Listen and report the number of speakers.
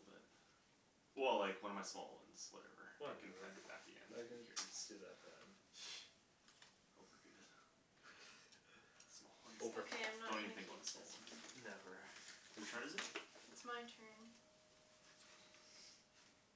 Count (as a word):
three